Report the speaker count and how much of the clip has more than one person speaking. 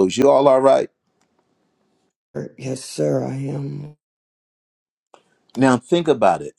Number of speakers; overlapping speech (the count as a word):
two, no overlap